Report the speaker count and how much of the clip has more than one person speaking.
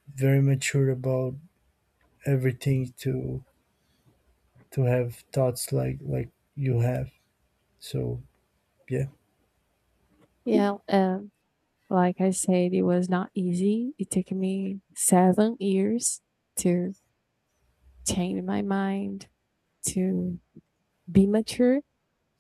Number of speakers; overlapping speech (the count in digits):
2, no overlap